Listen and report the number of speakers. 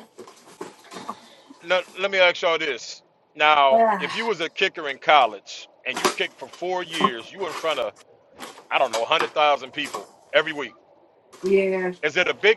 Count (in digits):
2